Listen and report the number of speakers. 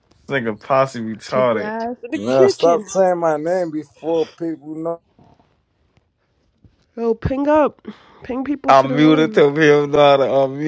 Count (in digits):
3